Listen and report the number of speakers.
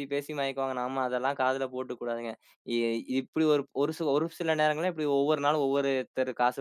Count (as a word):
one